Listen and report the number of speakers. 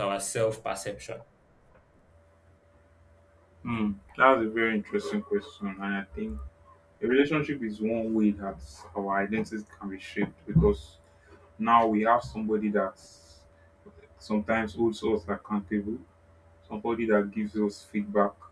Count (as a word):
two